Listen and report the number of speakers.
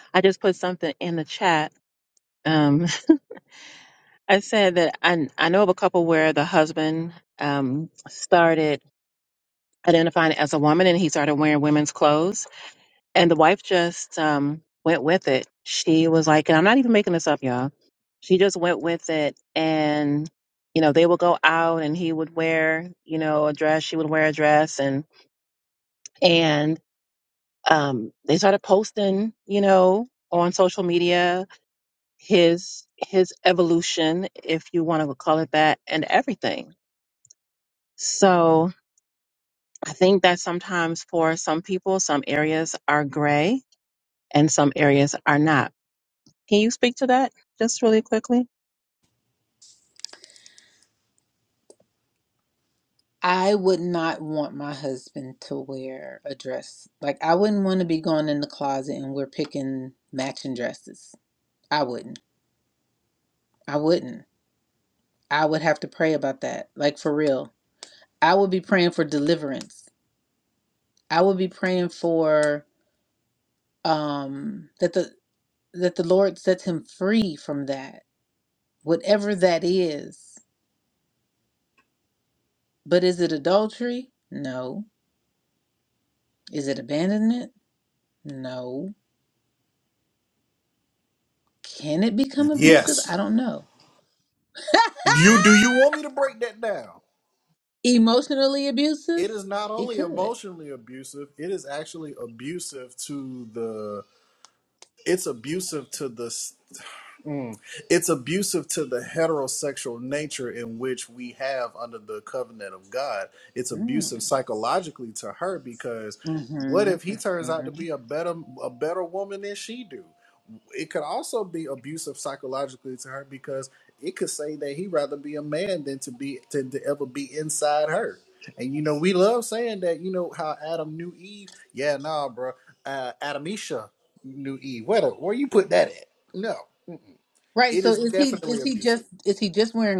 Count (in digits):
3